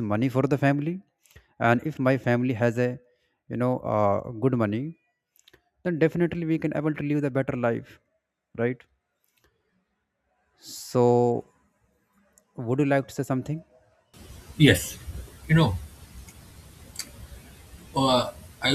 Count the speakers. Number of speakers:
2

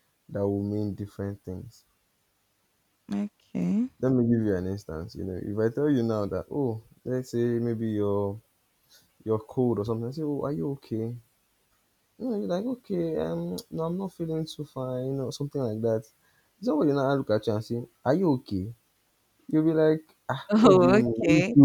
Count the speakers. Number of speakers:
2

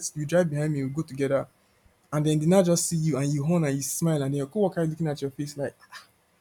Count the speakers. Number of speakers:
1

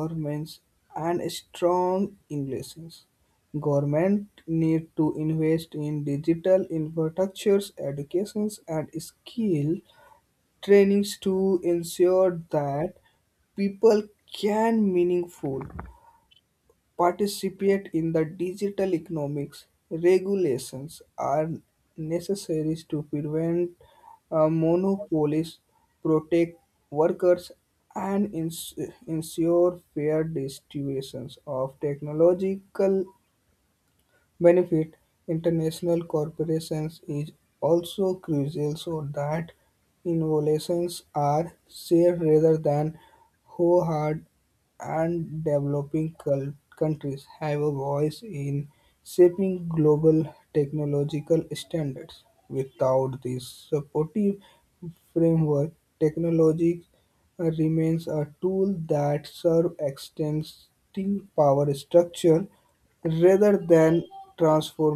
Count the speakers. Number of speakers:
1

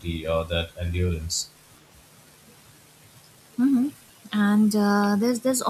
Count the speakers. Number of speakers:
2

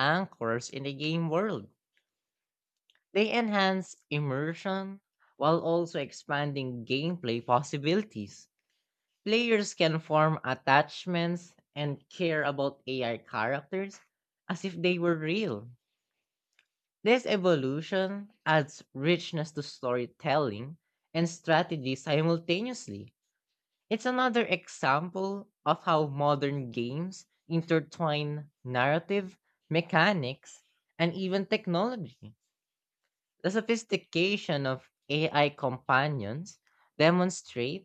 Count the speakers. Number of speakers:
1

